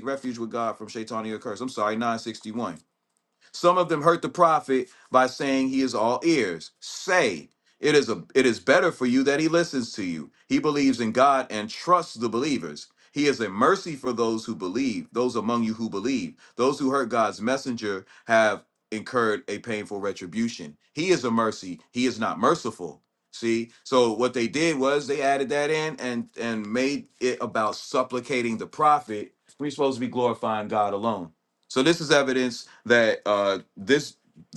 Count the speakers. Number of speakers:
1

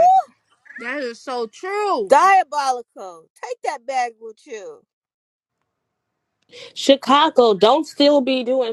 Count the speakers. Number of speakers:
3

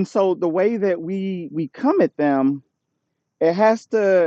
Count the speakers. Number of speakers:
1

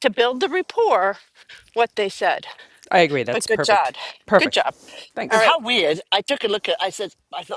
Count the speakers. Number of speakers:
3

